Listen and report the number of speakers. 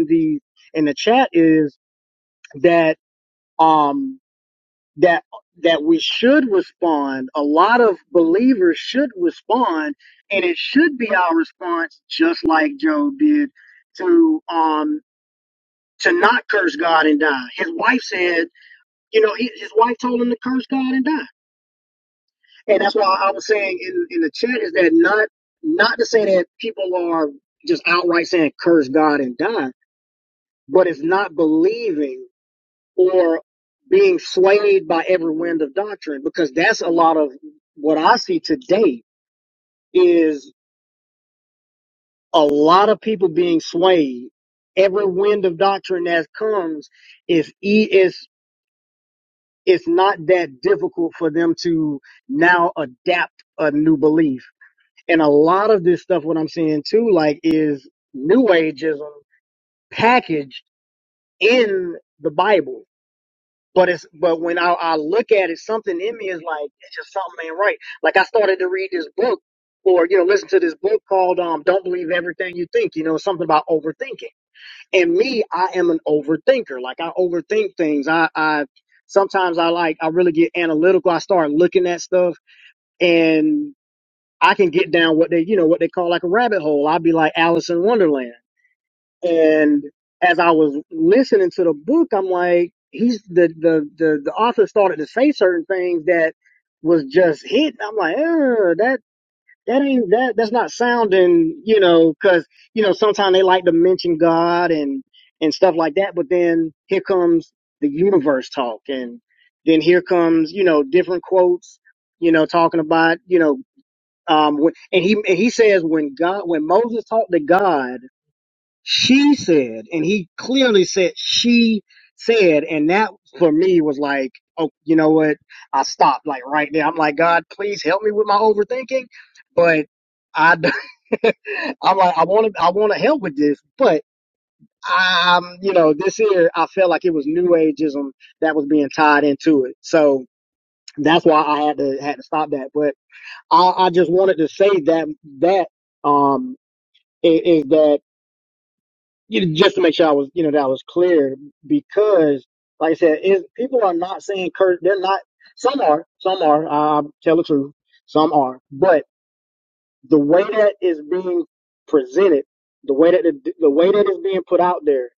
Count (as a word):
one